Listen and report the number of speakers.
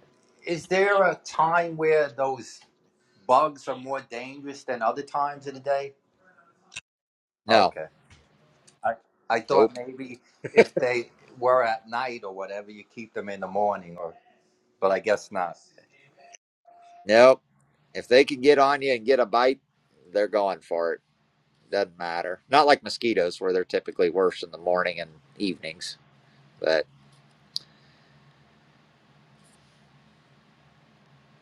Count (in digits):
2